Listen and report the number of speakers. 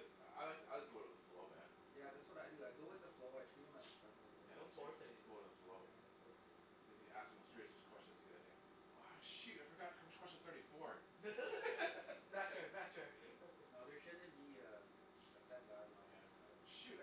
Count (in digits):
3